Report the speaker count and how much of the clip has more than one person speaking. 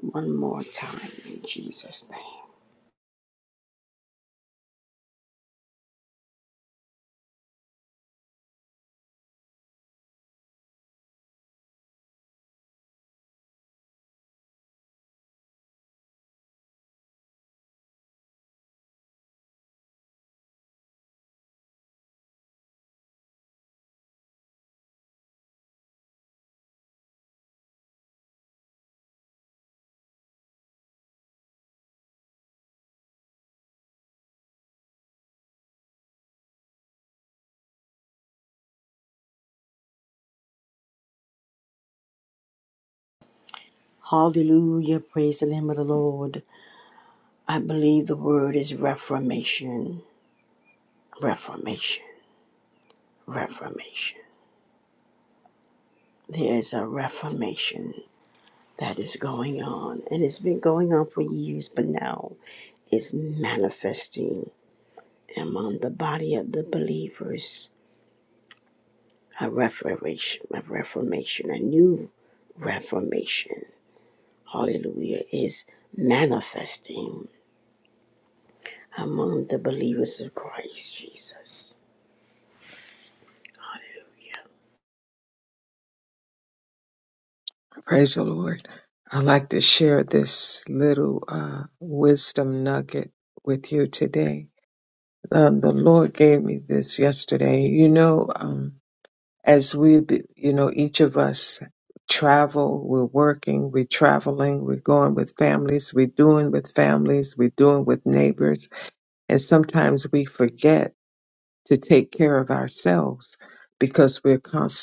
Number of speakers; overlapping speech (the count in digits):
2, no overlap